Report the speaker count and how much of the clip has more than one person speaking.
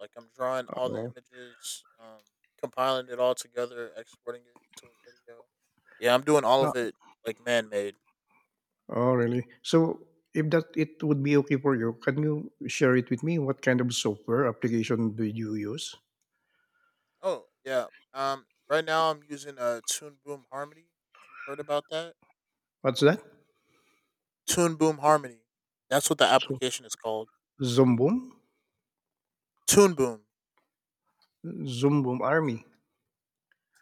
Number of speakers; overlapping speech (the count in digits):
2, about 2%